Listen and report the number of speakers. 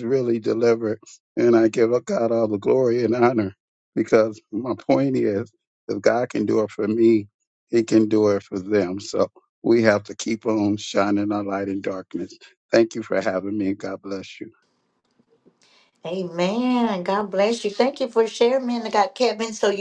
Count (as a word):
two